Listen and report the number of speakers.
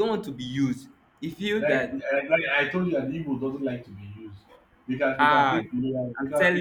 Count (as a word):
two